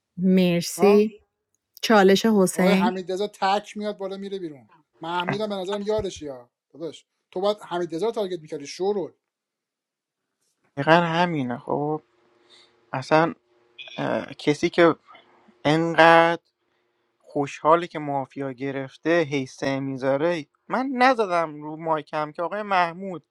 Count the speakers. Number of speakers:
three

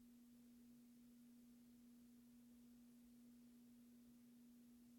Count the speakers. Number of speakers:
zero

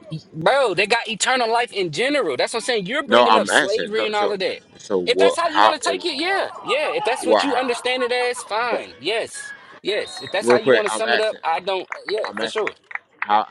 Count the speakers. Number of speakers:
two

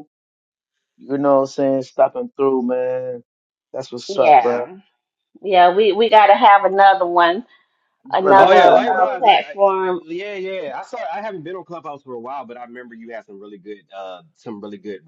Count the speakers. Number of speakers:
three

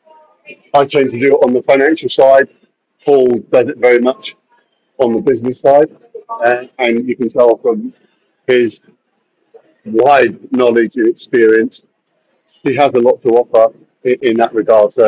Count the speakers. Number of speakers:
one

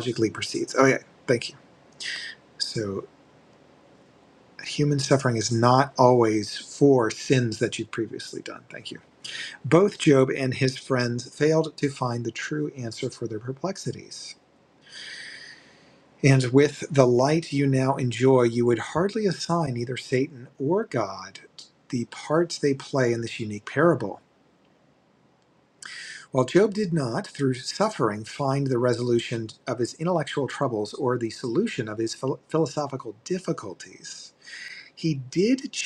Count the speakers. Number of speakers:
one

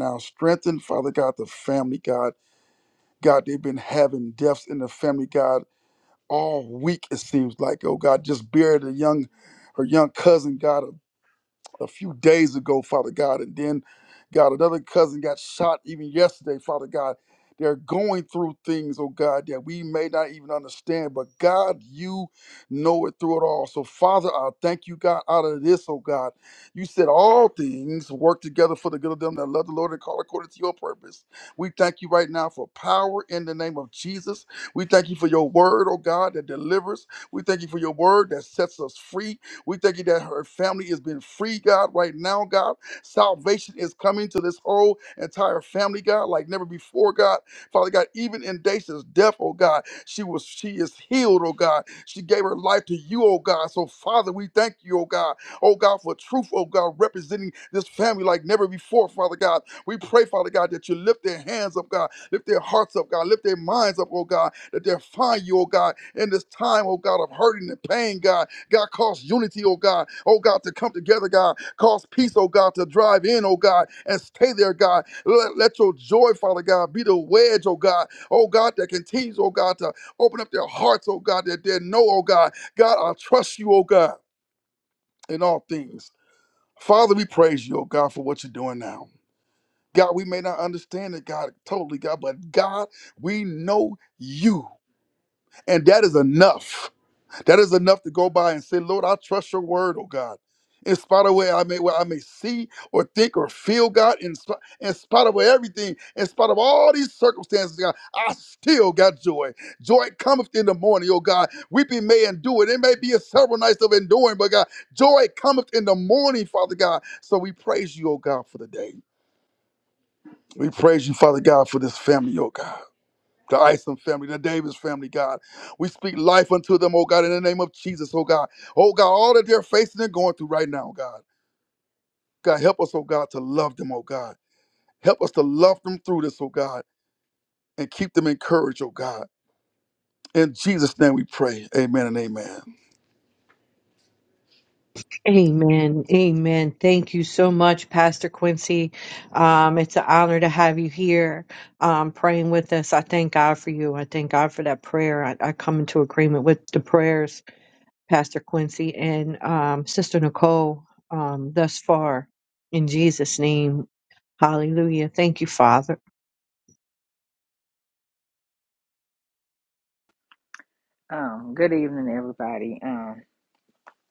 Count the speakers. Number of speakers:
three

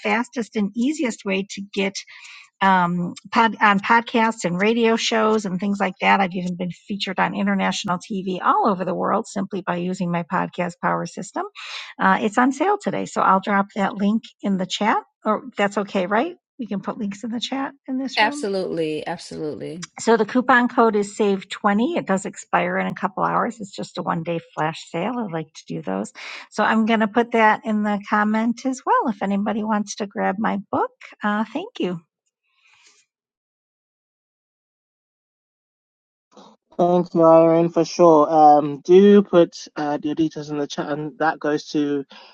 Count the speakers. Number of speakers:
three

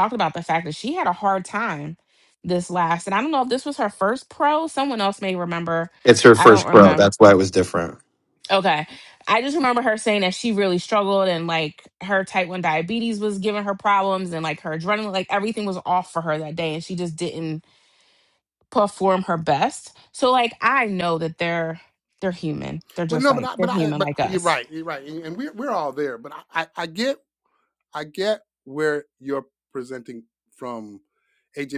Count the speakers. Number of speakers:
three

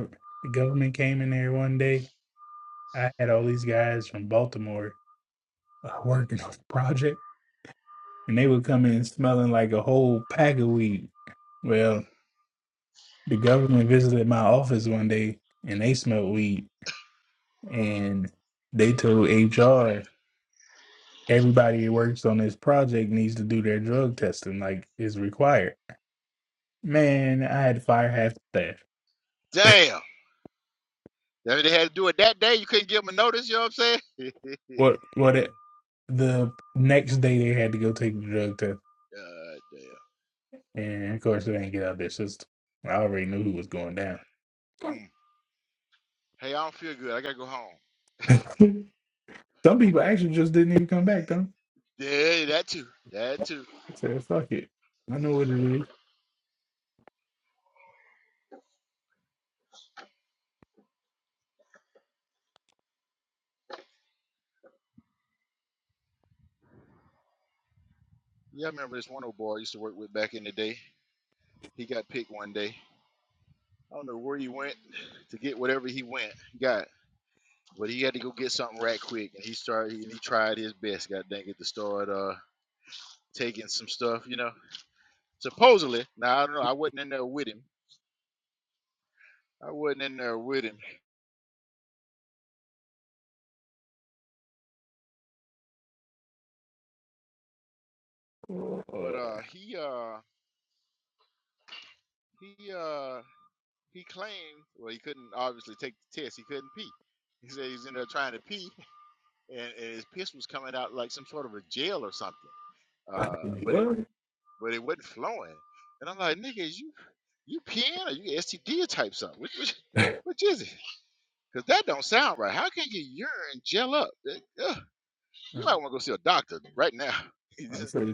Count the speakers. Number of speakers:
two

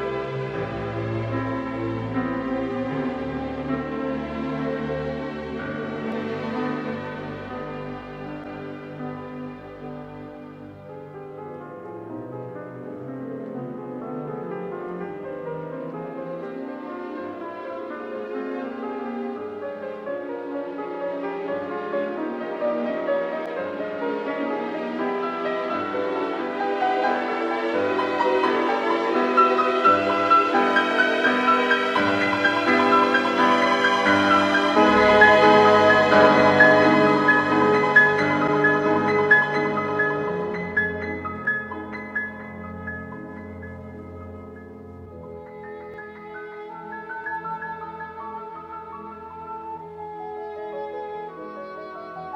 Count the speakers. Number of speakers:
zero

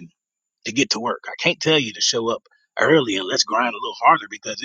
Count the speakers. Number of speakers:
one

